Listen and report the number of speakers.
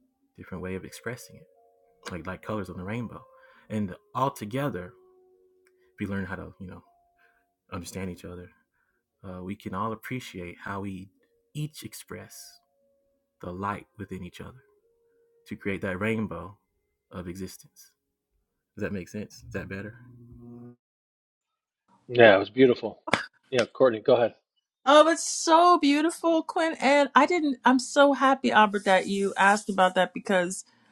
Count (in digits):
3